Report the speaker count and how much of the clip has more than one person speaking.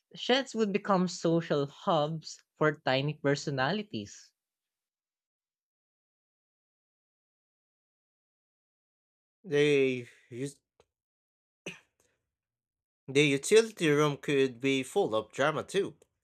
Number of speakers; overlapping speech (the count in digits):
2, no overlap